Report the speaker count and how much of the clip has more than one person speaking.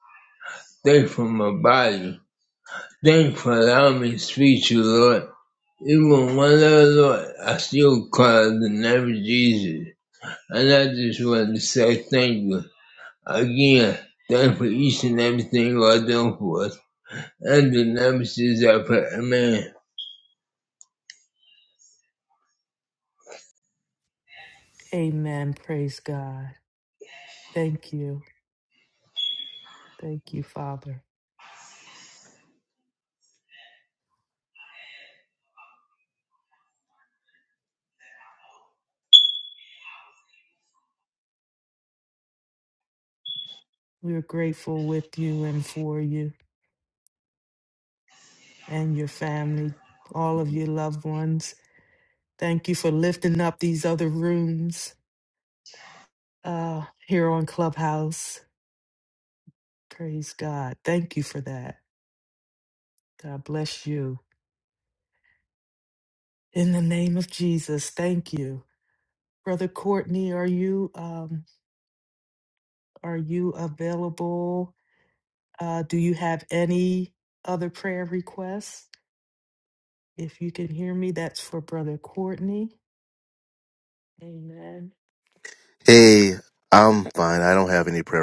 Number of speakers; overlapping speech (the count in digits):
3, no overlap